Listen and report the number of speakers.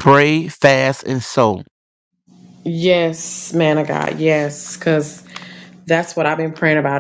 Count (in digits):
2